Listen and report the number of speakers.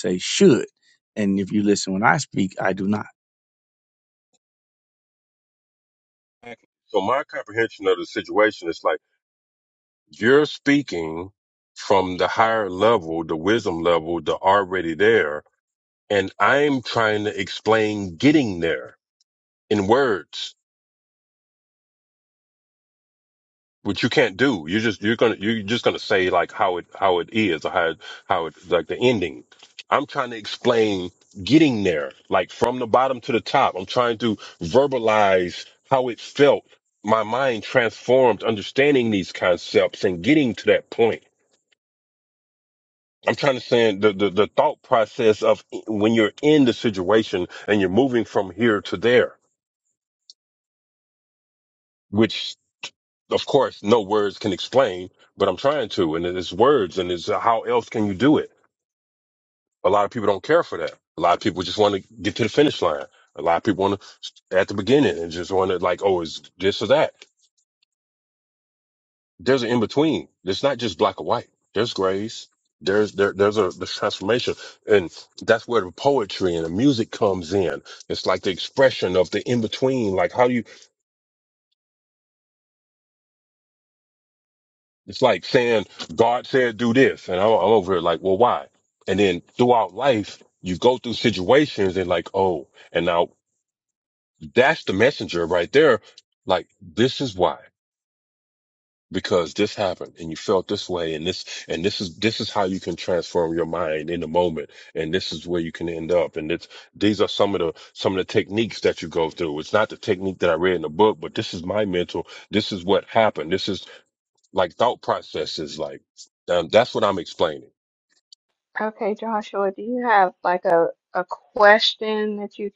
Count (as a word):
three